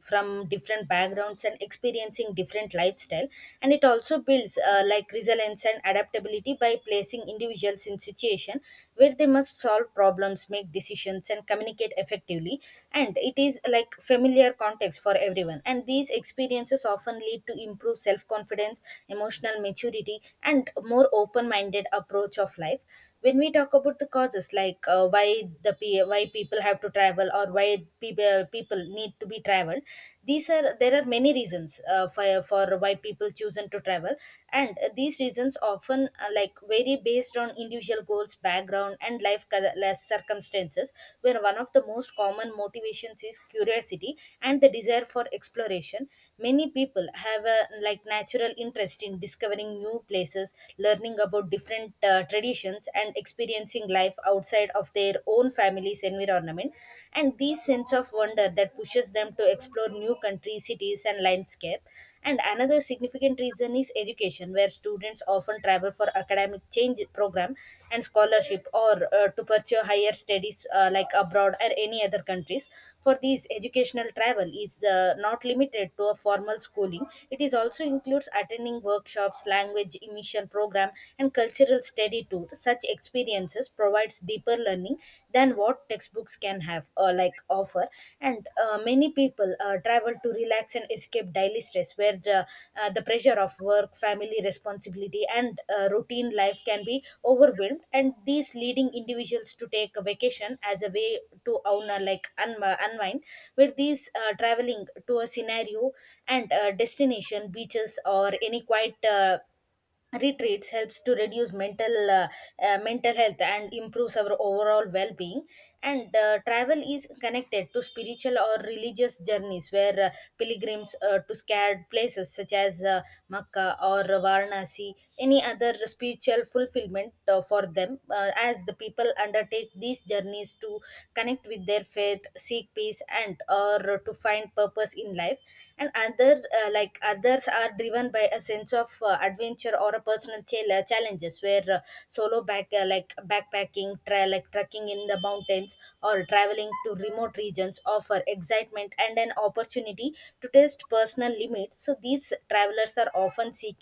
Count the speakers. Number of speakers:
one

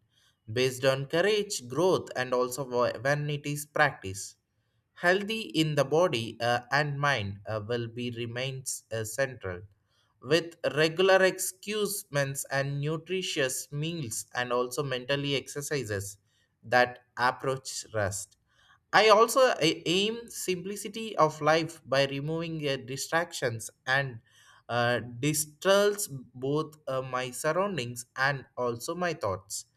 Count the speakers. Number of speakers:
one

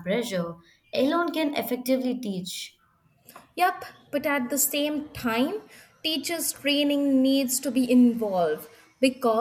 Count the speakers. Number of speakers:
two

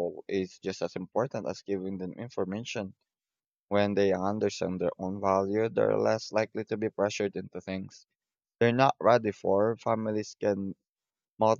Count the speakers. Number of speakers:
one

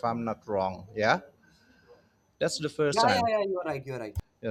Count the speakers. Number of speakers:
two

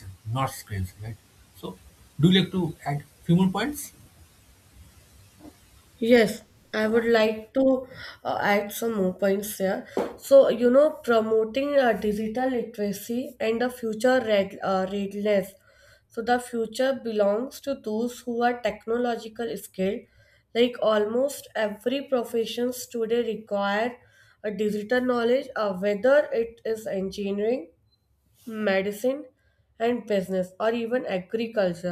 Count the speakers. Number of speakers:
two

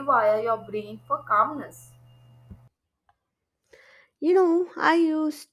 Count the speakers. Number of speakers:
two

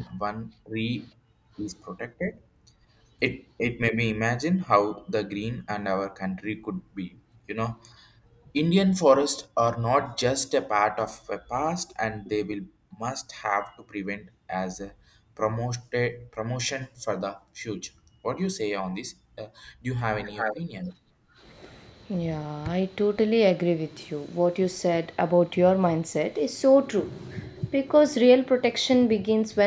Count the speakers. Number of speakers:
two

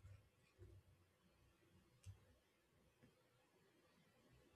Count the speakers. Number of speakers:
zero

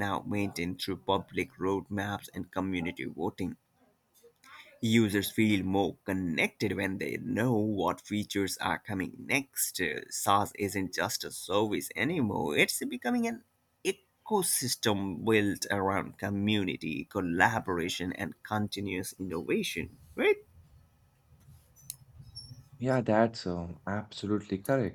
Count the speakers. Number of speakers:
two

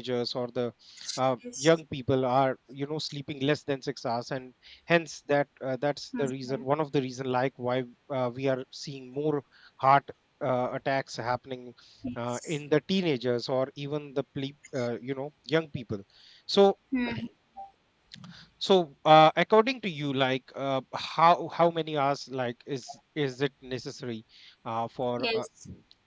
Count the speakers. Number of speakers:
two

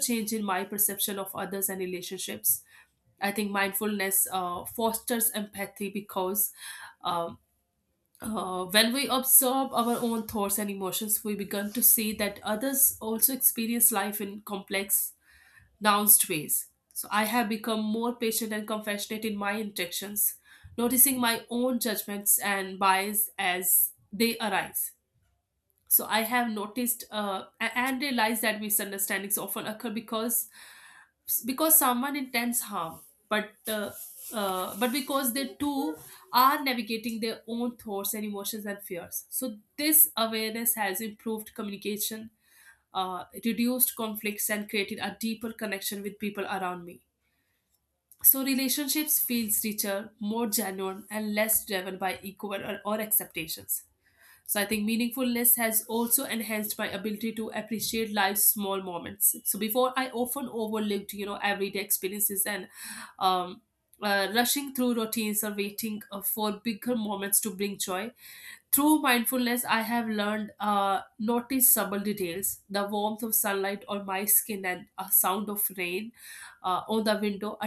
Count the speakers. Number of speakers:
one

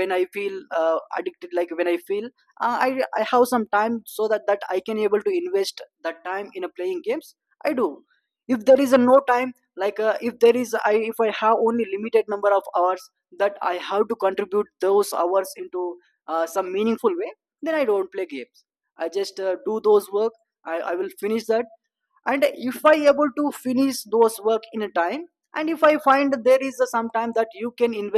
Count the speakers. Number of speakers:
one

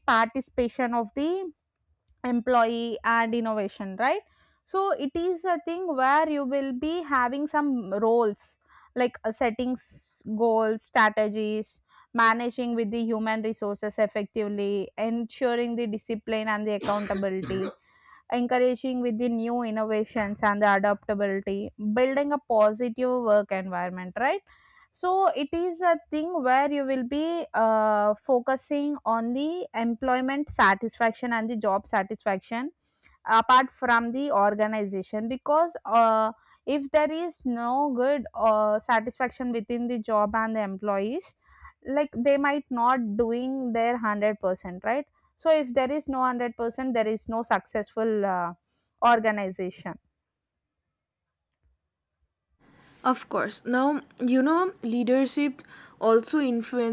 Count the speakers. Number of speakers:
two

